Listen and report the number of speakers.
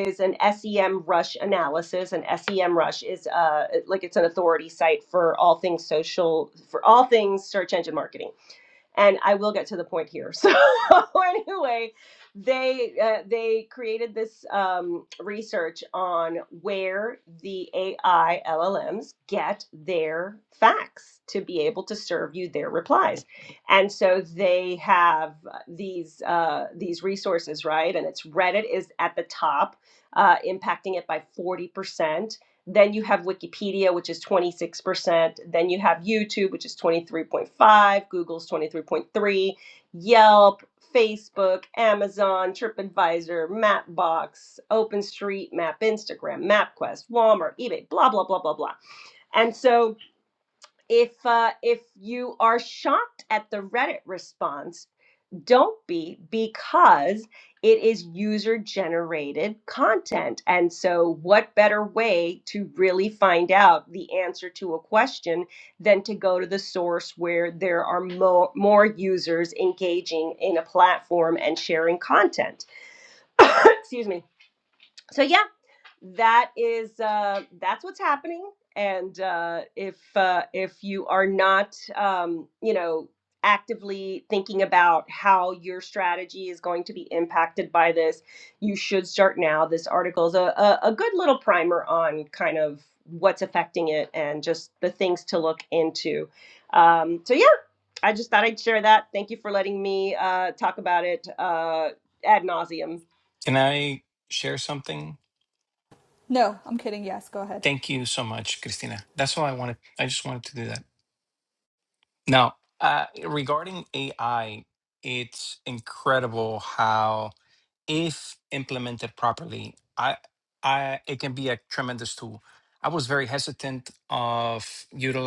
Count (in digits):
3